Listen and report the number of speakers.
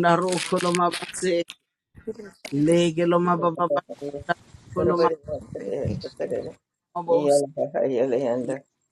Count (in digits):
3